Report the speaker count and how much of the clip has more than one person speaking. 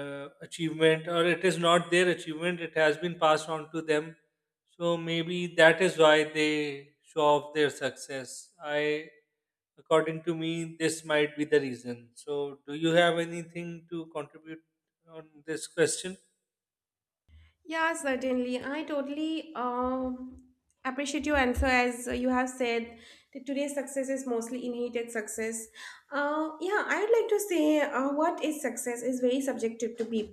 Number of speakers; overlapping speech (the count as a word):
two, no overlap